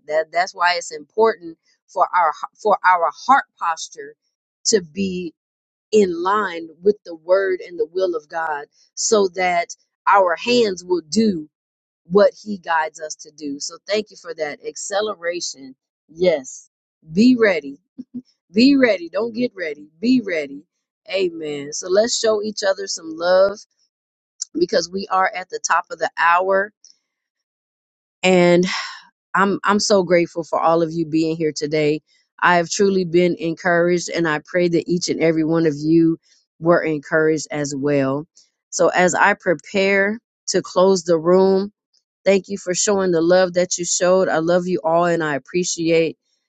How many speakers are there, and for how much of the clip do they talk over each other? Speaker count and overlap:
one, no overlap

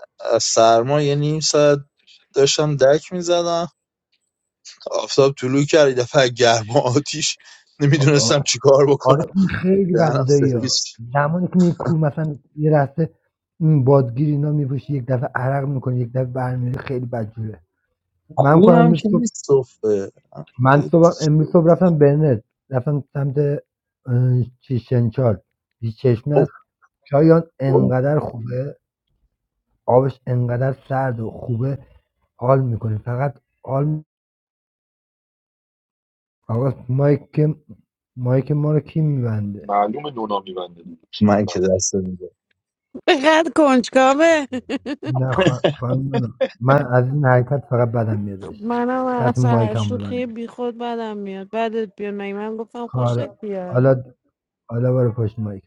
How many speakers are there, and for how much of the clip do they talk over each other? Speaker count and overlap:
four, about 8%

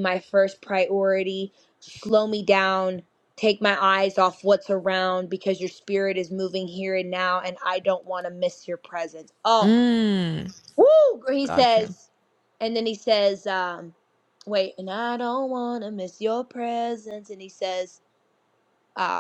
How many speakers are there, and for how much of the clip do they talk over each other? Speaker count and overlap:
two, about 3%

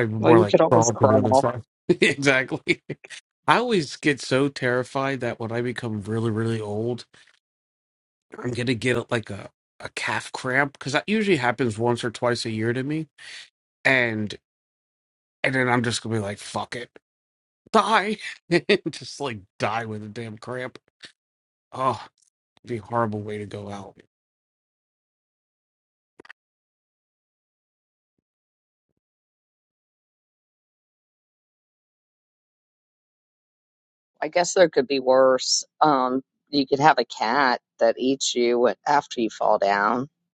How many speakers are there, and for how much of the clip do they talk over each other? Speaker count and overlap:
two, about 3%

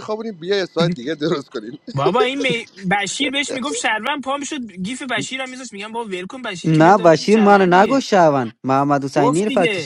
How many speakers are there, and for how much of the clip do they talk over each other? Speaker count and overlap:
three, about 21%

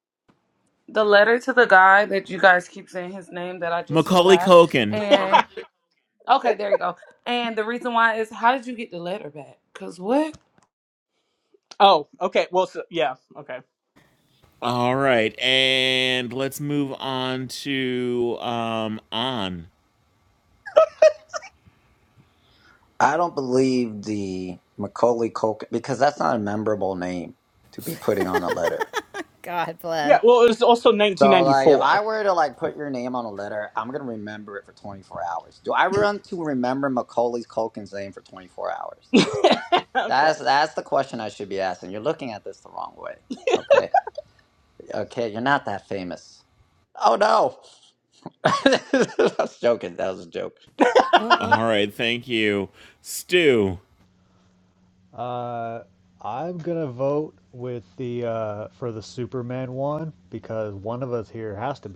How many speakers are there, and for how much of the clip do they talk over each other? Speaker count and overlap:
six, about 4%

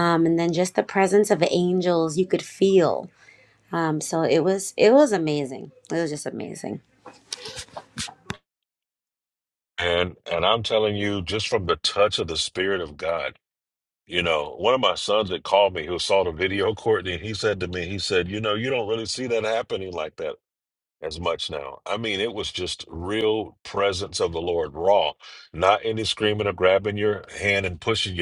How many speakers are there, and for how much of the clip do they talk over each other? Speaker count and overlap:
two, no overlap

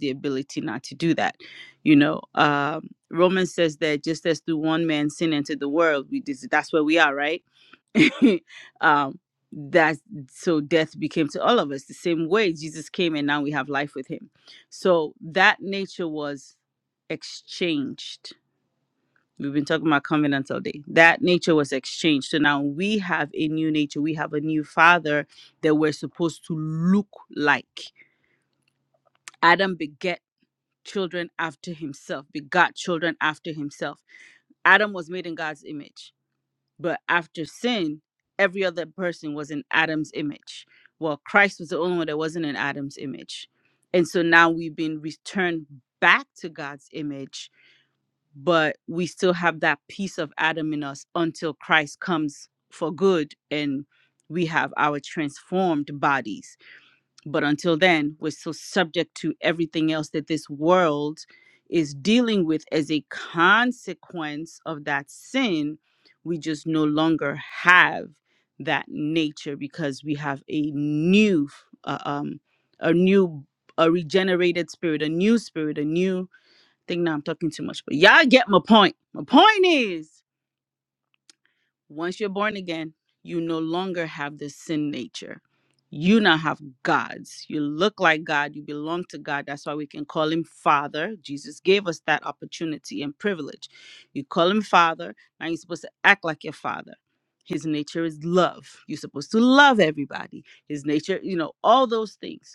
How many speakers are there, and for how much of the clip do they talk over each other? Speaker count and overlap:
one, no overlap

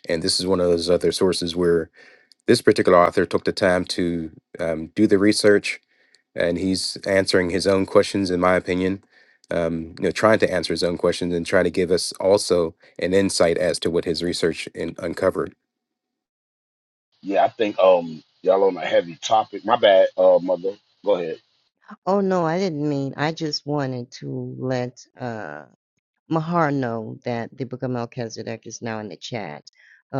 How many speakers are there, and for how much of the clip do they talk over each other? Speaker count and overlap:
three, no overlap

